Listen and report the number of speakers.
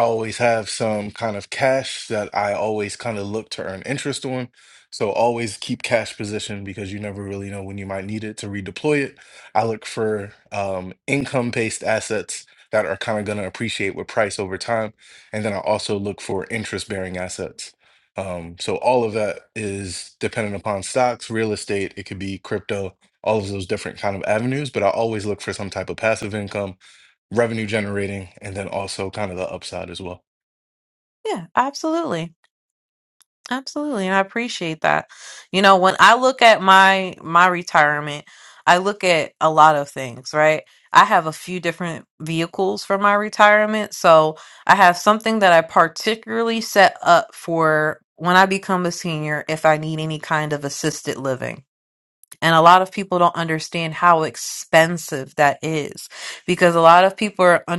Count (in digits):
2